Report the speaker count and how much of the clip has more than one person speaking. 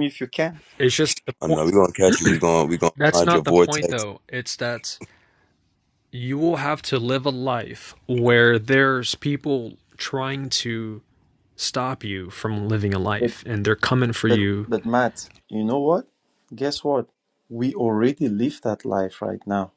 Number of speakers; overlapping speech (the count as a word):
three, about 8%